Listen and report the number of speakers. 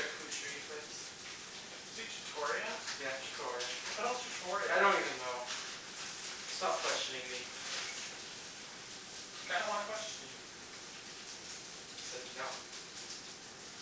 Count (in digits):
2